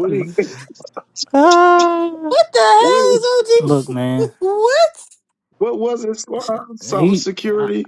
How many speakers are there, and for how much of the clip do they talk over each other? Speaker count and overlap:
3, about 11%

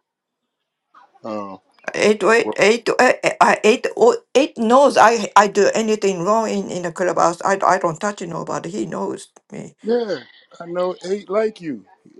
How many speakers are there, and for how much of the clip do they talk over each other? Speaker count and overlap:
2, about 1%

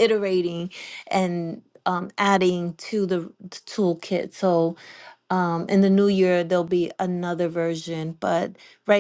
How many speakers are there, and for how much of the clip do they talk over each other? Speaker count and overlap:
1, no overlap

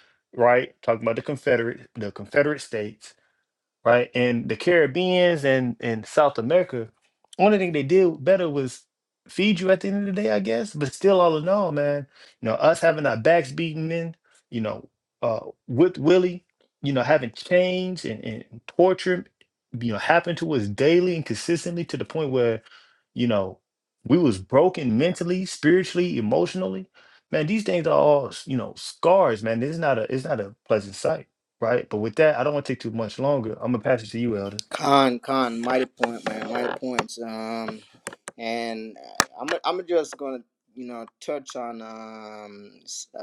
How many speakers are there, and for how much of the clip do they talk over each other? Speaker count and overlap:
2, no overlap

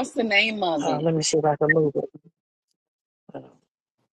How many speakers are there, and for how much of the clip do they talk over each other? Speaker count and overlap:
2, about 6%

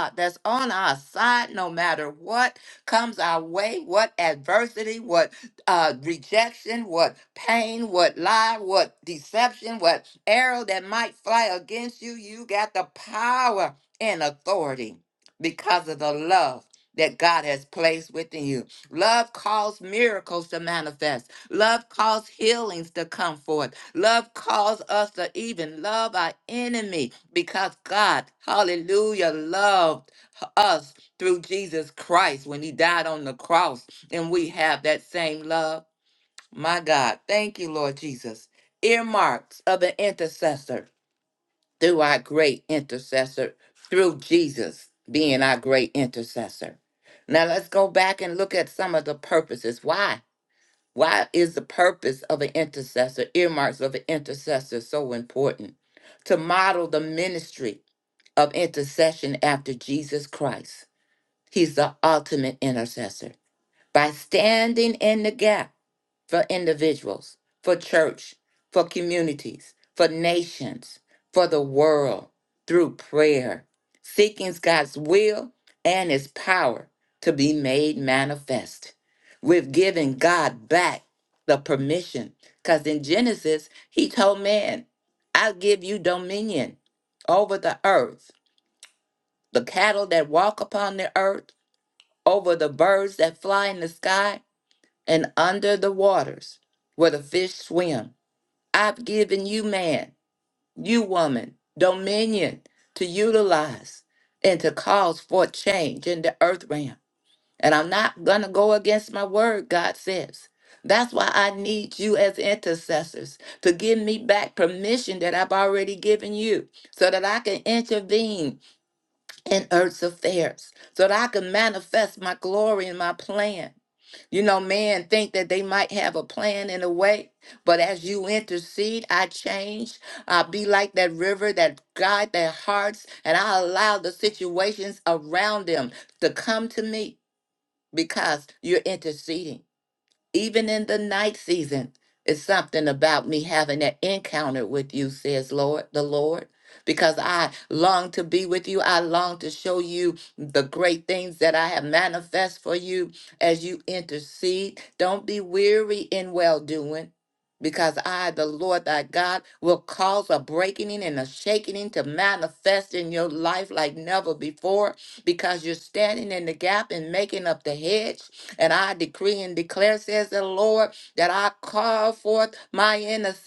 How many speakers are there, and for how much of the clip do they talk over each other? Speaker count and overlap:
1, no overlap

